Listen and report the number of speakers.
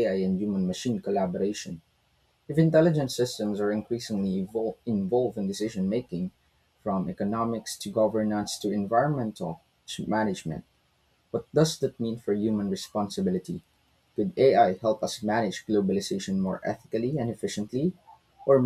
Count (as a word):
one